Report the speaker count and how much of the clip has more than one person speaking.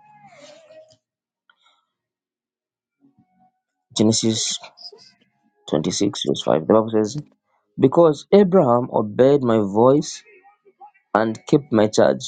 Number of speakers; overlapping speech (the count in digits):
1, no overlap